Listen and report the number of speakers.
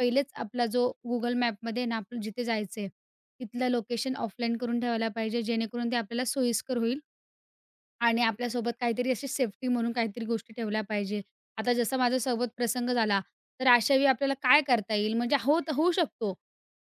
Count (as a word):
one